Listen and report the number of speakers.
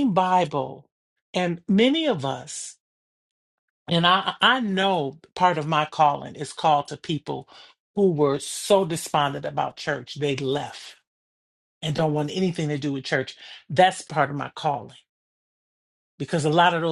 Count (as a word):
one